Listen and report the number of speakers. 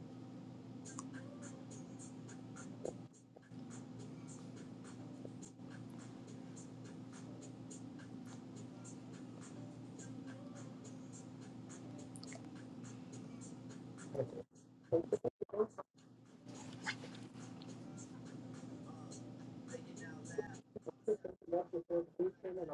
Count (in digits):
0